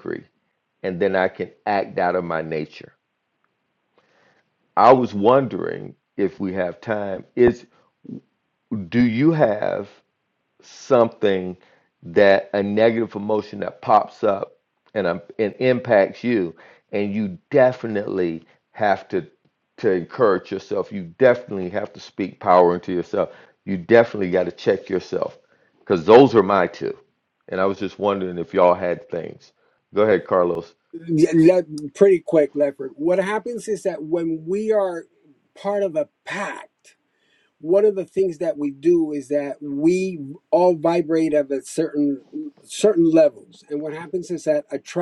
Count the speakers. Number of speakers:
2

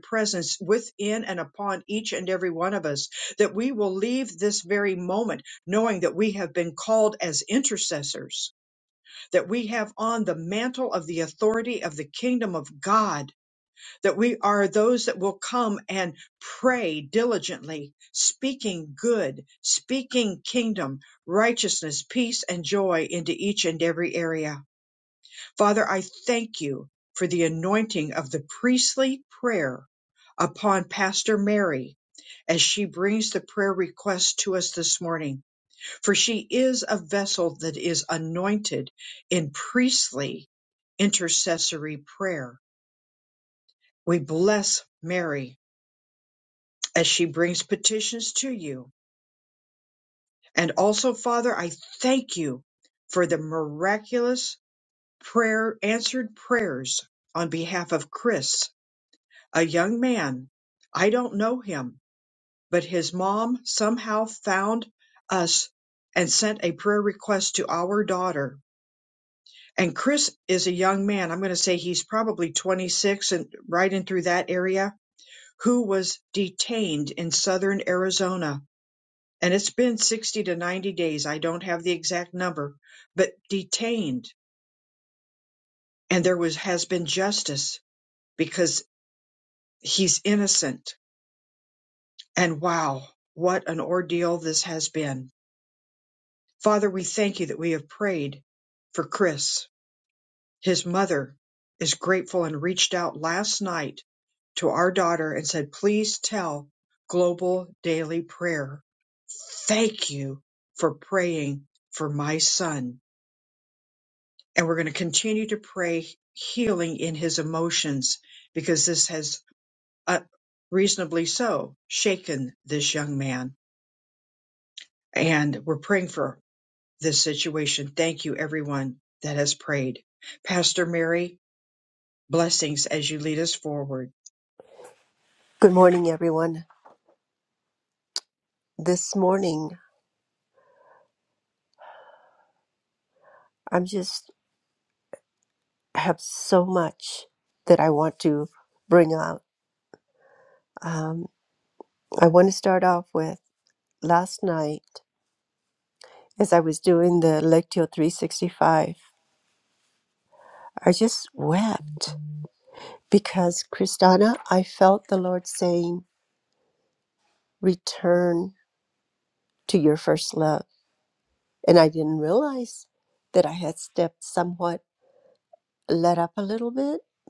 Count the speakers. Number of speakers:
2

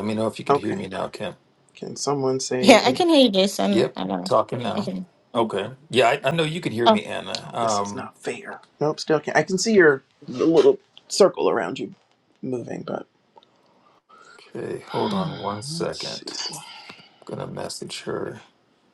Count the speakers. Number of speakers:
3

